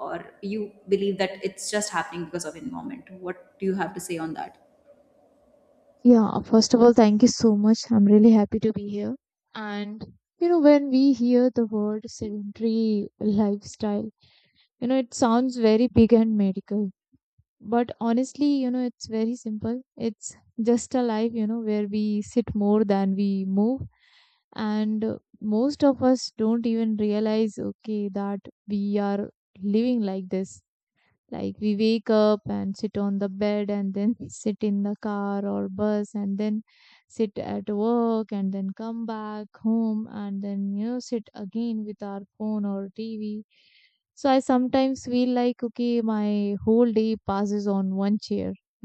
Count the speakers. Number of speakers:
2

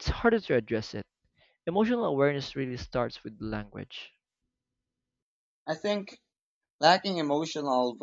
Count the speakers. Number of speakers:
2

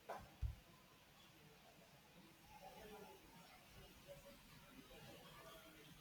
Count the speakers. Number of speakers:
0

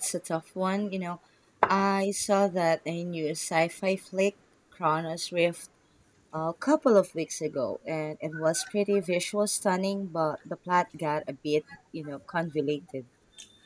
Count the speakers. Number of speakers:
1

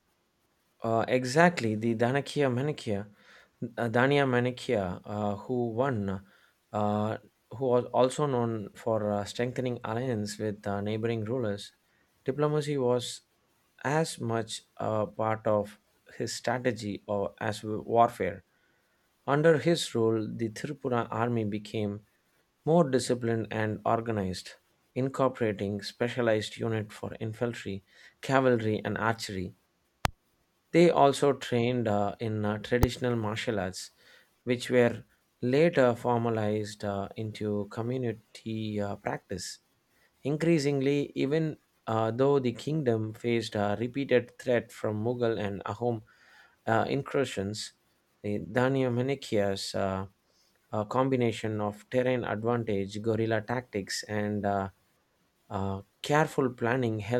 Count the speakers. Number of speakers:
1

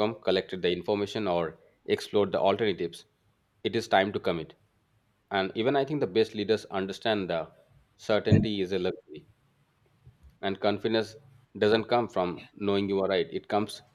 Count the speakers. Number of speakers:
1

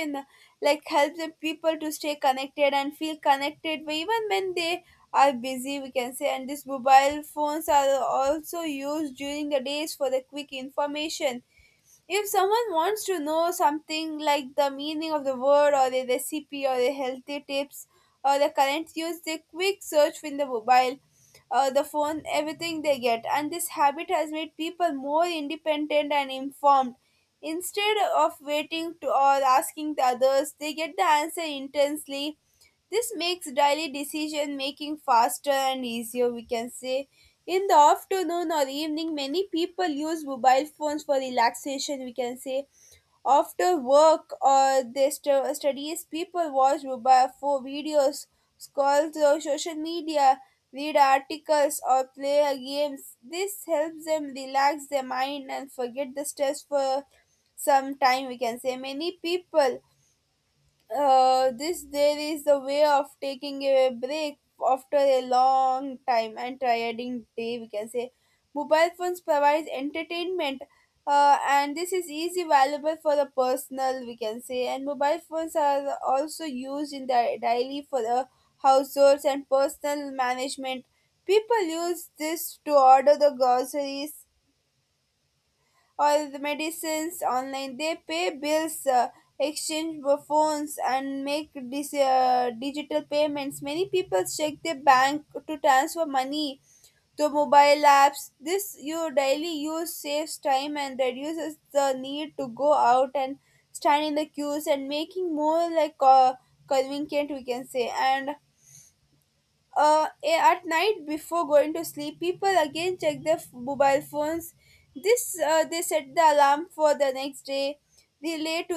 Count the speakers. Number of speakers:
1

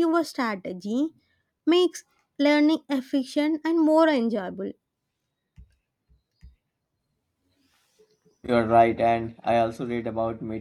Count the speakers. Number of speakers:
2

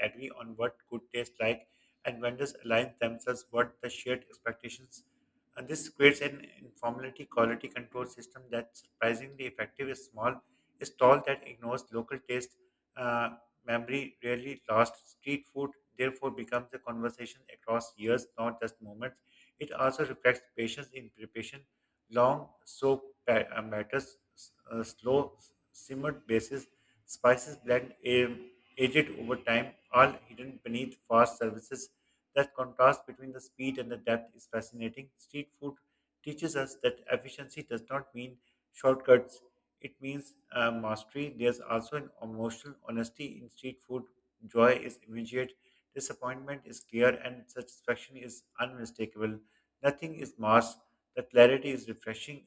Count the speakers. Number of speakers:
1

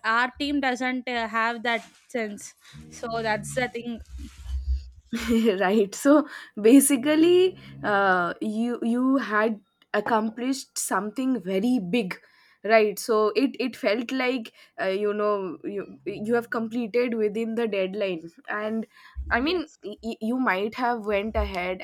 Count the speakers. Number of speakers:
2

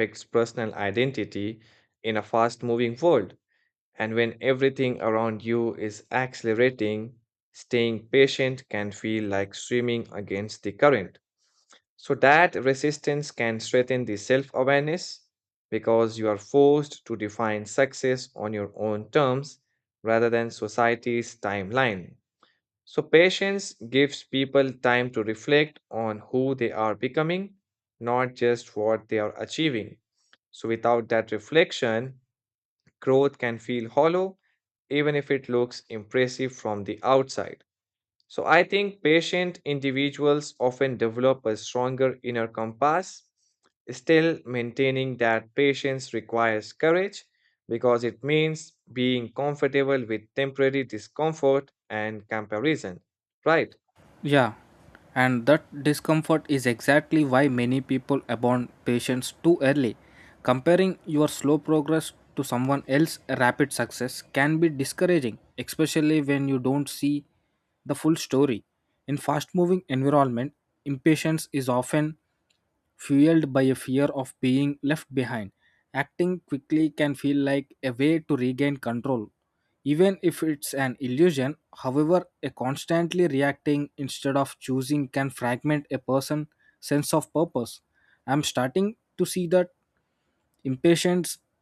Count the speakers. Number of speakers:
2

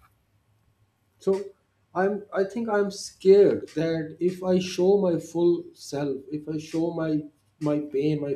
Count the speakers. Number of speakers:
1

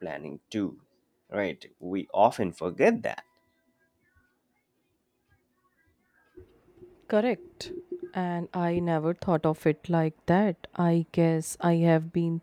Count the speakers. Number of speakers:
2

